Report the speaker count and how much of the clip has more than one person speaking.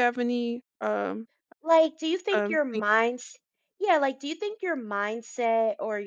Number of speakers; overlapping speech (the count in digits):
2, about 8%